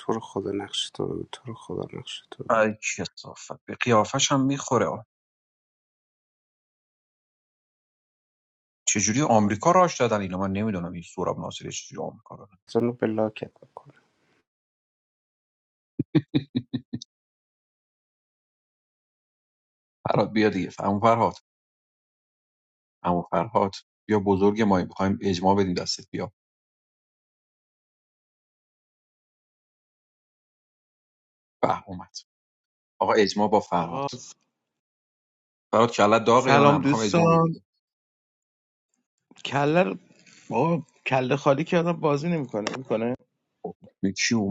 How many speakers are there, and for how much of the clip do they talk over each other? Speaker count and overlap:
3, about 3%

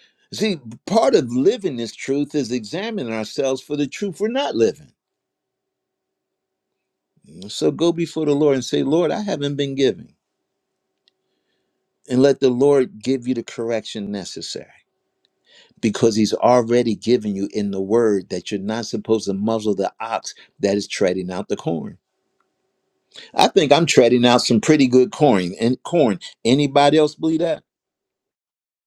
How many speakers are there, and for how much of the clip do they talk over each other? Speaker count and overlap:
1, no overlap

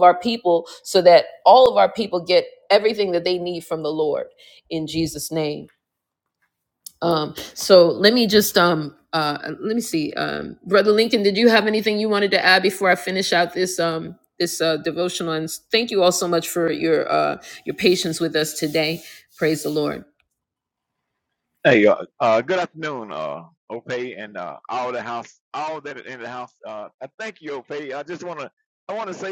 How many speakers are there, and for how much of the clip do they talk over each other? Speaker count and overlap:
2, no overlap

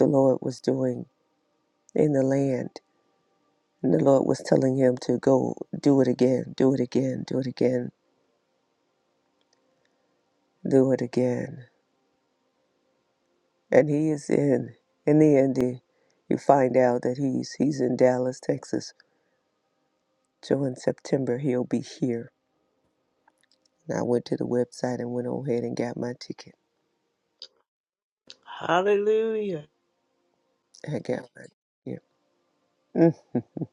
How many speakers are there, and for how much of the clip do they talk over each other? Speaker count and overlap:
2, no overlap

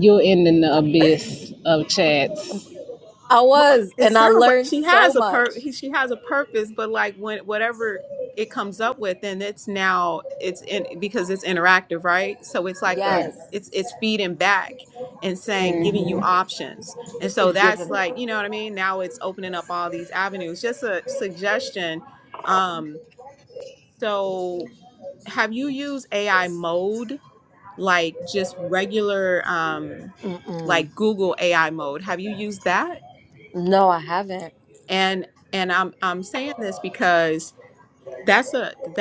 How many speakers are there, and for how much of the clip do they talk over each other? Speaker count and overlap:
3, about 8%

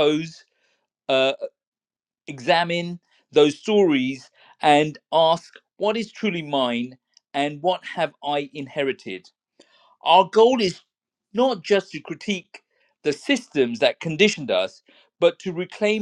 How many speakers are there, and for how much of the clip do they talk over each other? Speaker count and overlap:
1, no overlap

